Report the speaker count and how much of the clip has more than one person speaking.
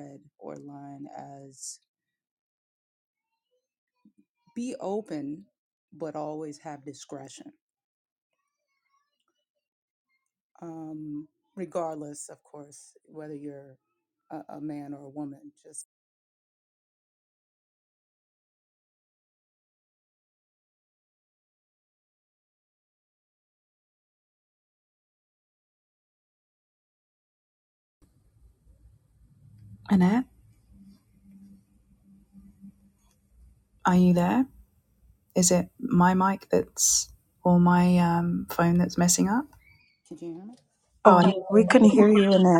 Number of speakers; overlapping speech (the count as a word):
three, about 1%